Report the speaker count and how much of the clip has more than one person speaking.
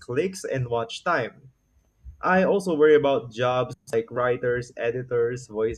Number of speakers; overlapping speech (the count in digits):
1, no overlap